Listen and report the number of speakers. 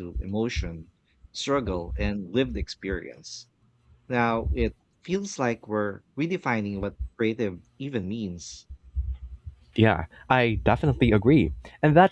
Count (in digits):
2